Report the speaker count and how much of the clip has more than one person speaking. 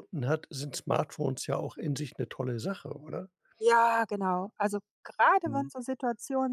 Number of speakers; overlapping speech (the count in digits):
2, about 3%